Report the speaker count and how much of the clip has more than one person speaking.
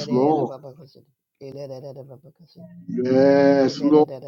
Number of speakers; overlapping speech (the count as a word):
two, about 28%